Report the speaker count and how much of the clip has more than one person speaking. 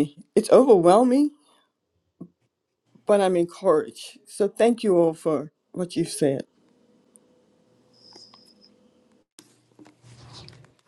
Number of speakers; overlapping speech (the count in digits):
1, no overlap